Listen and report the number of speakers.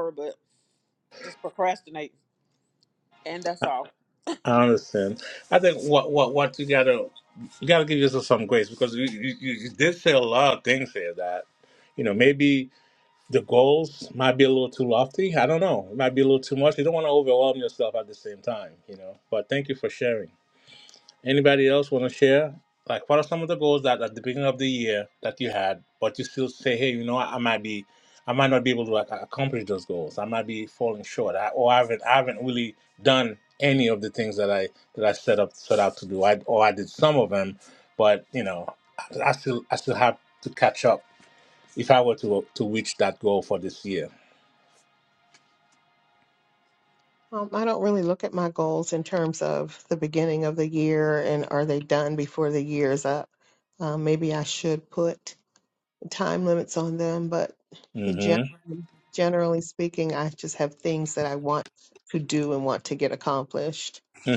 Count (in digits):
3